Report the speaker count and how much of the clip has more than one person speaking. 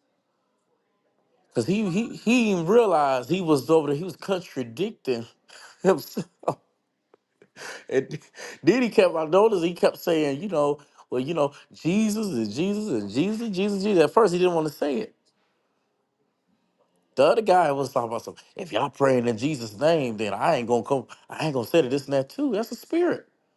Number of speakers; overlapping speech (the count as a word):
one, no overlap